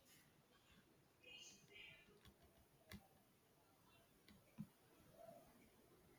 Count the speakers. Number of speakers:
zero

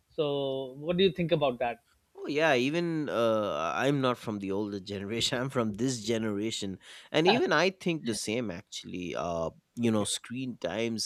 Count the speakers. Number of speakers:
two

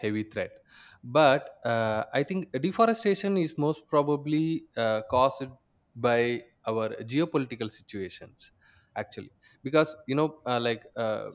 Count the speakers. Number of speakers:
one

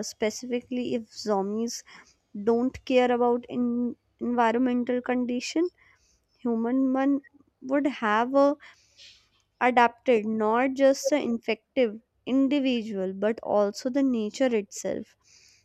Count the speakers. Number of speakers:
one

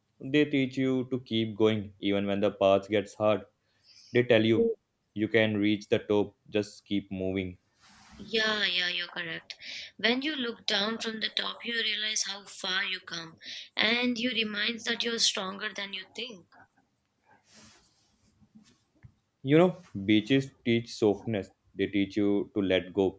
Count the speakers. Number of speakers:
two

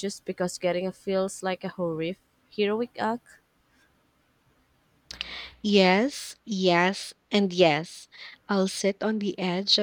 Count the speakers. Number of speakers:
two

